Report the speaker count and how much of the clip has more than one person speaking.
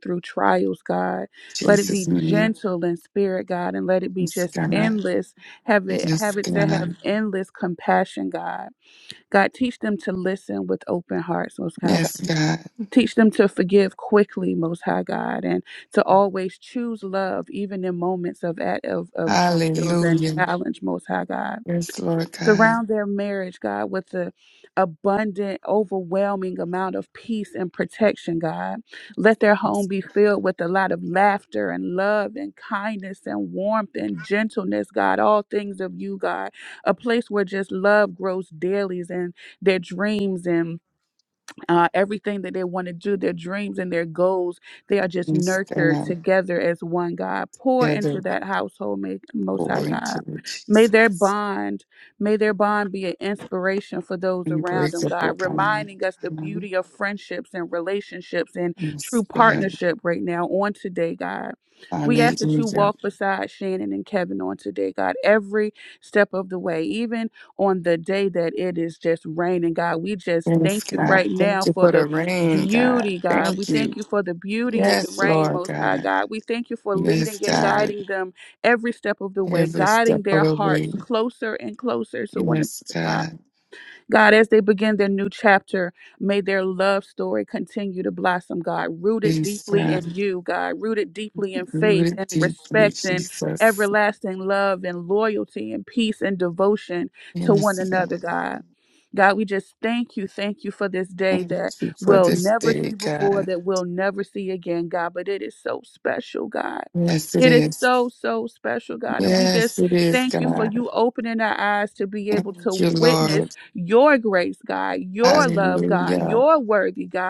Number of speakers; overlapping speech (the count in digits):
2, about 22%